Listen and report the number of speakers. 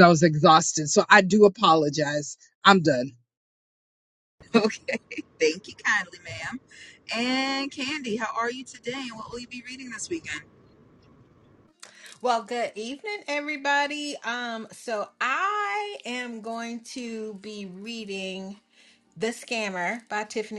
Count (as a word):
three